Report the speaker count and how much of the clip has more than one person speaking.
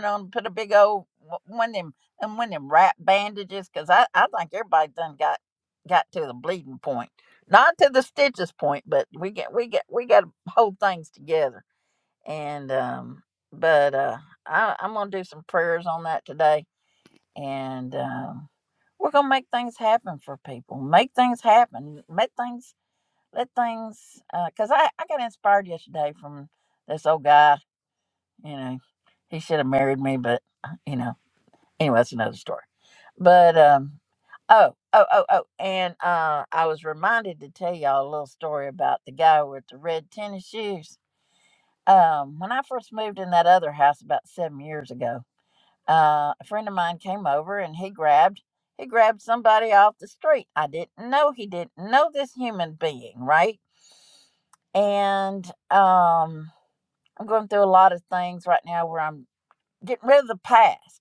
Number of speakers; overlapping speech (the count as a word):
one, no overlap